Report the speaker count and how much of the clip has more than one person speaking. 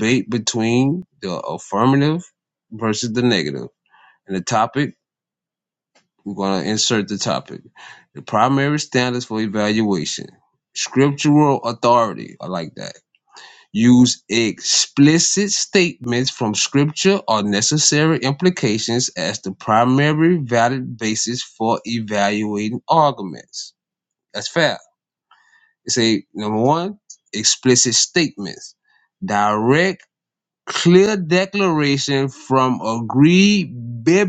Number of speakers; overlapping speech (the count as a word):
one, no overlap